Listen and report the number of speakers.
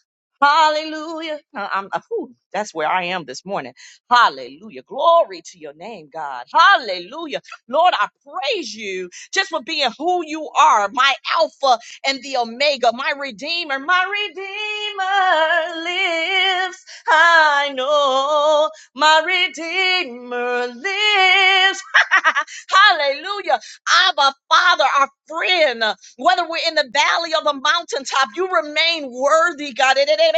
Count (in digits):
1